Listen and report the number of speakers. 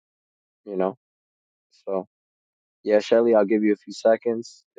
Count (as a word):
one